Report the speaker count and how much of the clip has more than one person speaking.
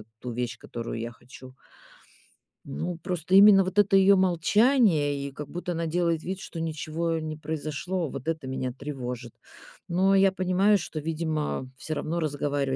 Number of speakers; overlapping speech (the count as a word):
one, no overlap